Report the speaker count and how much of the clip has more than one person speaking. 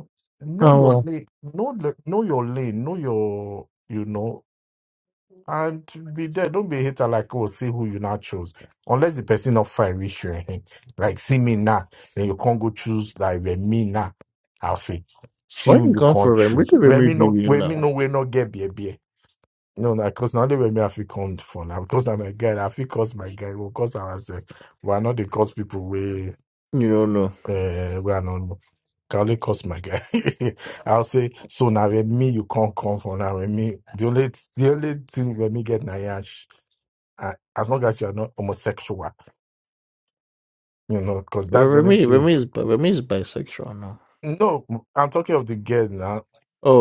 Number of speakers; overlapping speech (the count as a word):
two, about 7%